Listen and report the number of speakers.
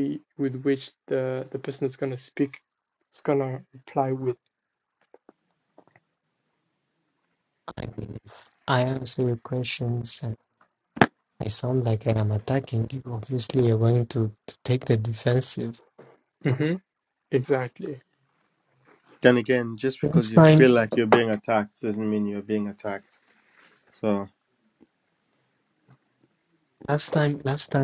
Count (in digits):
3